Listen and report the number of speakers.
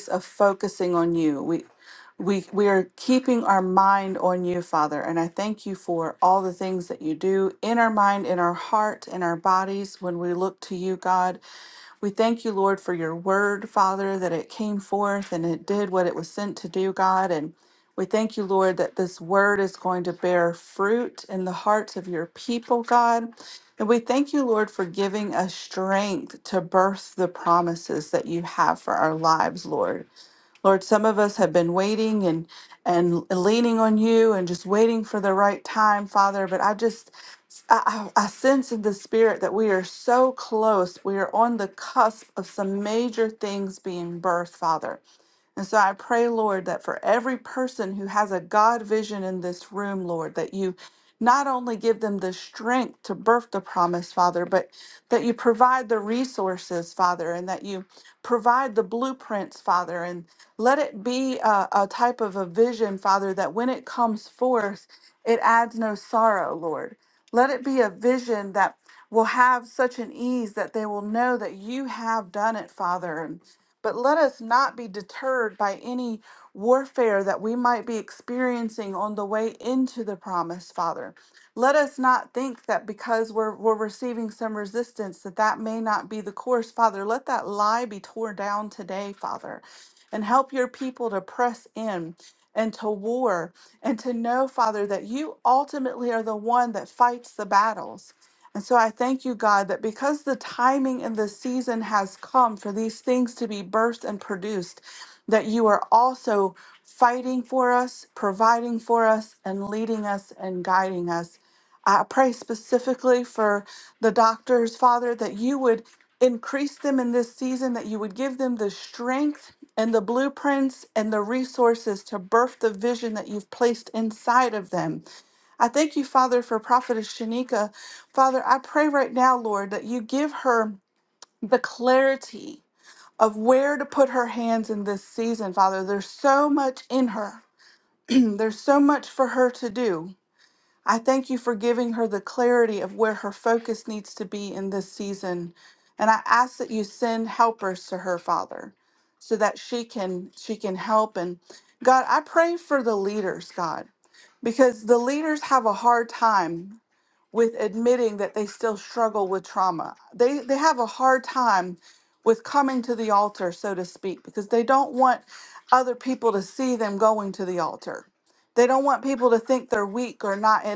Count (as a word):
one